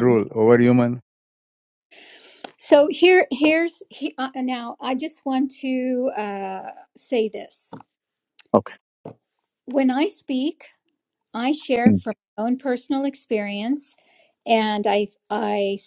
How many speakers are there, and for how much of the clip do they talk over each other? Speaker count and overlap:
2, about 2%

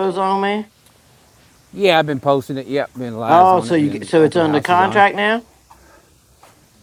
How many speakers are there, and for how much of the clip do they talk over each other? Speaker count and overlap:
2, about 26%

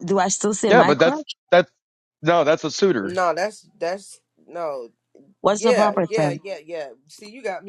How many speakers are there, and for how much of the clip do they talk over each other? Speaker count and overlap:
3, about 17%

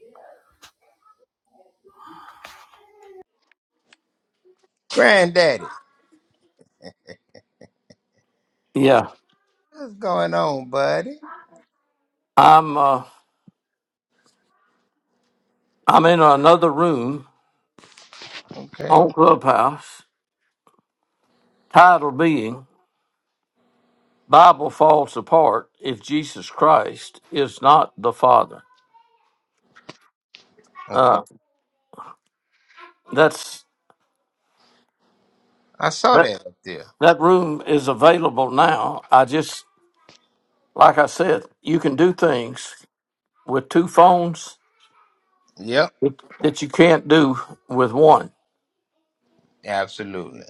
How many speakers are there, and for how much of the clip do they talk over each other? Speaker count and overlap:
2, about 1%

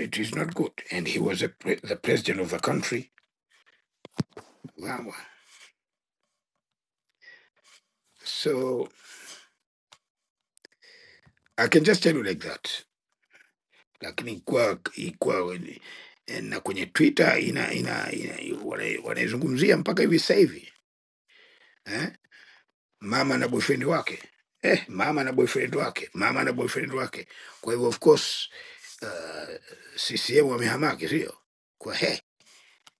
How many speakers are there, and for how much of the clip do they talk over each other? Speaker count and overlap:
1, no overlap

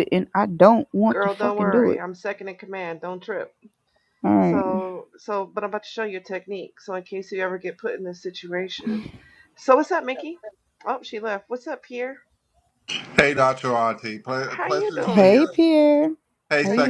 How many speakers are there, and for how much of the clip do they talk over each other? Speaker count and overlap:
3, about 14%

